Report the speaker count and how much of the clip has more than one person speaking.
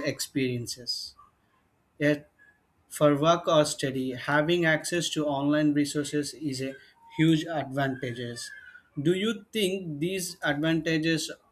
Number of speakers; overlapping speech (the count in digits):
1, no overlap